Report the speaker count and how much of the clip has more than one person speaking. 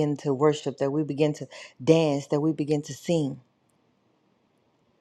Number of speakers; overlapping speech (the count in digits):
1, no overlap